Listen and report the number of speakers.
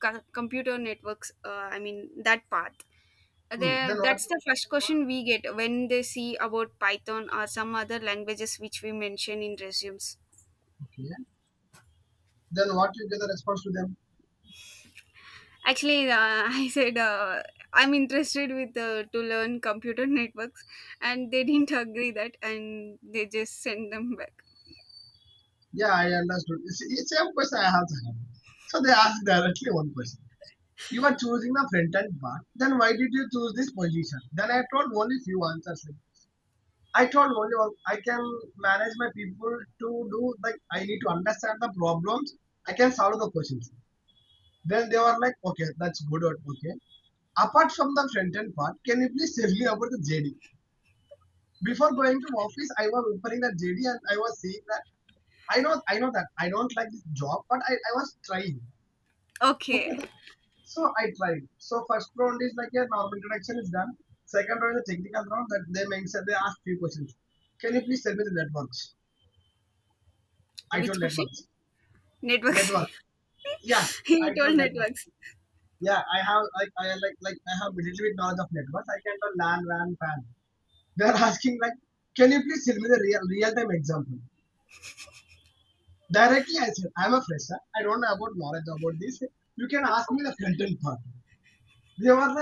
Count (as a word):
two